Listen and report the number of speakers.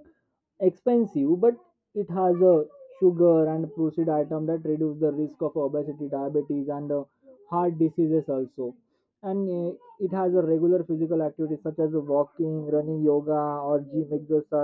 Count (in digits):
1